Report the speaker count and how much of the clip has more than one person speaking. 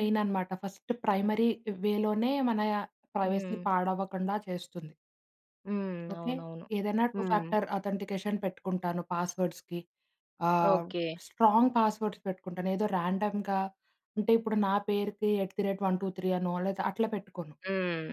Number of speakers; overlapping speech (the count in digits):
2, about 8%